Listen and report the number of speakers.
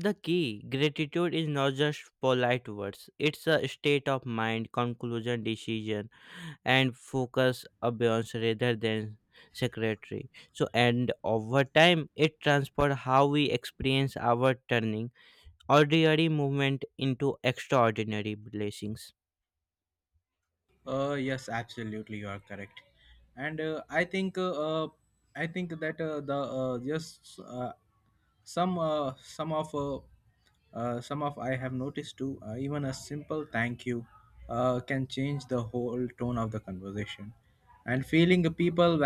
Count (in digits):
2